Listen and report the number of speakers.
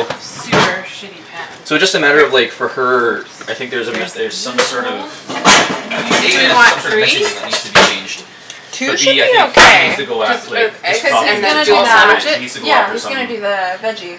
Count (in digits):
3